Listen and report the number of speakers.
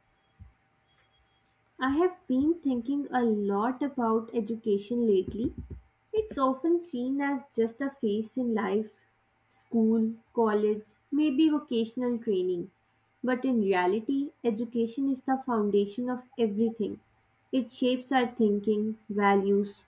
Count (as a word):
one